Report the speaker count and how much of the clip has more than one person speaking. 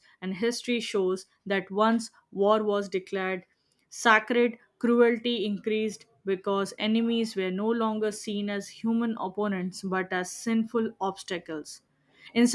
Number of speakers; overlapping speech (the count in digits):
1, no overlap